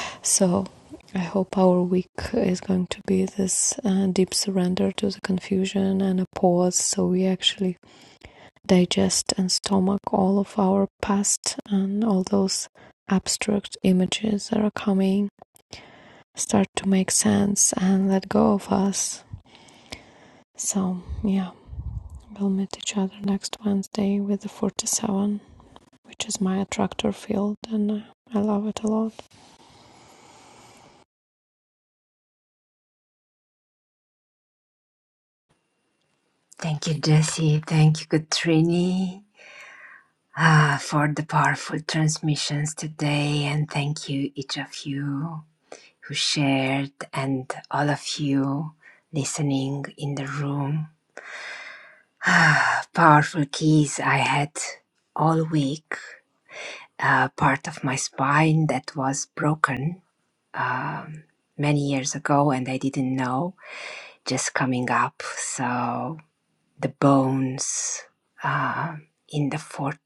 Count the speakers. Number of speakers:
two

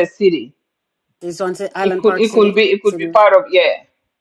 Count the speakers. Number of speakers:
two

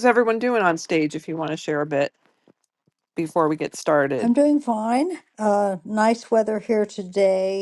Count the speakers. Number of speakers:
two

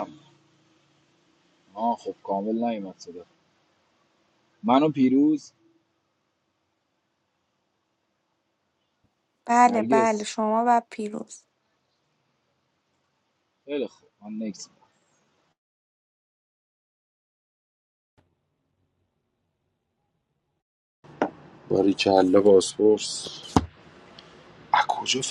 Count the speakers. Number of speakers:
three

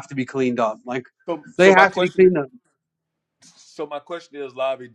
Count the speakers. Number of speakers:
two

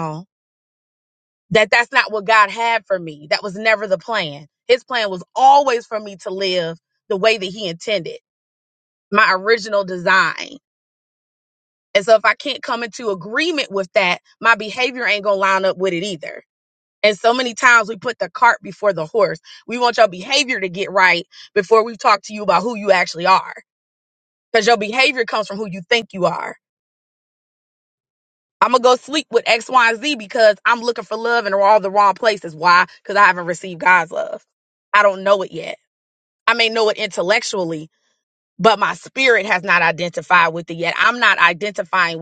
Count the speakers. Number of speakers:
one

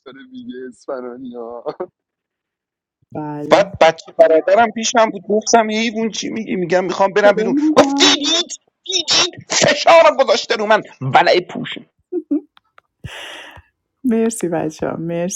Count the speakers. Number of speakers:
three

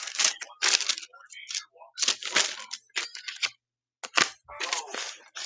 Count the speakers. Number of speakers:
zero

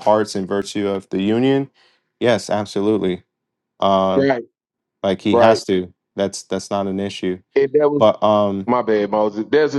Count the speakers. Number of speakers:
two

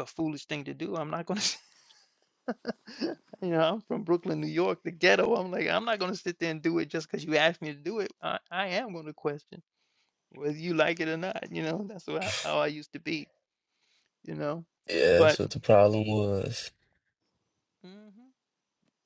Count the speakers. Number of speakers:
two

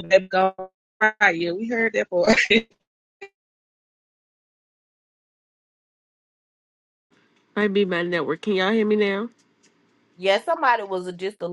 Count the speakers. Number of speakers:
three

